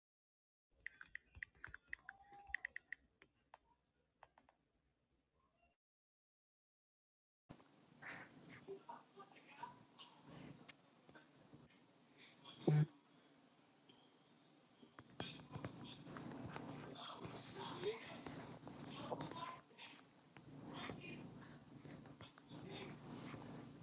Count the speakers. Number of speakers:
0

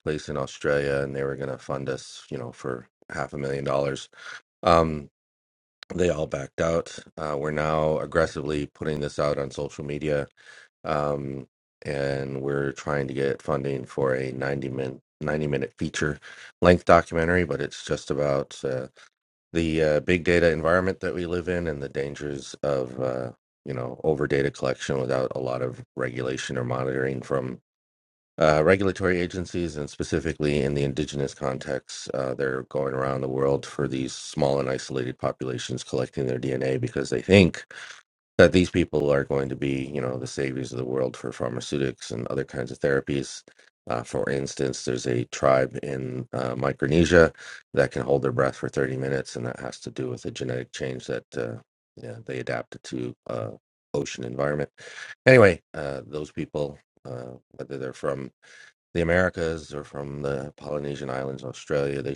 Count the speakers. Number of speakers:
1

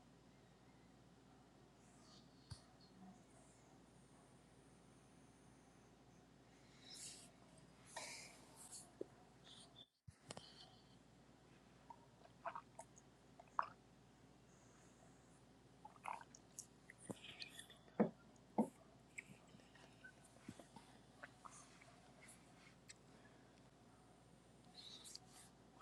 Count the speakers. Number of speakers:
0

